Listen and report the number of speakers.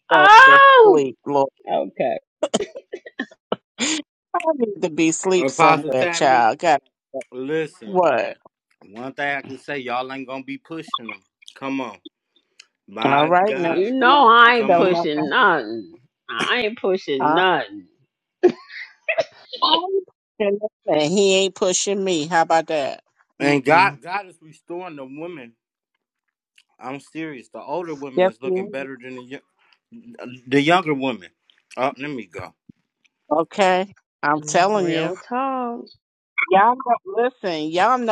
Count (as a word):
three